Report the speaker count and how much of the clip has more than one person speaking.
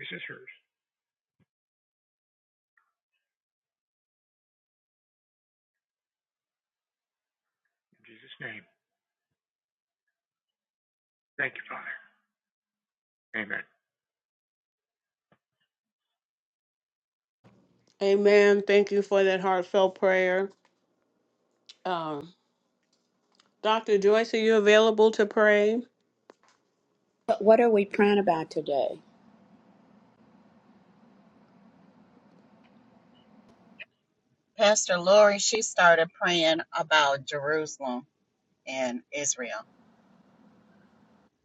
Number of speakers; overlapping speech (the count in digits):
4, no overlap